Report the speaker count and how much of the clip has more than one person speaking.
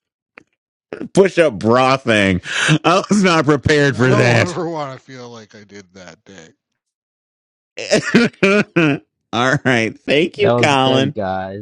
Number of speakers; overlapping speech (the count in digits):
3, about 12%